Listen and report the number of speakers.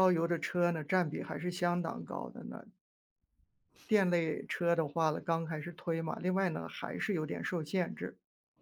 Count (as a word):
one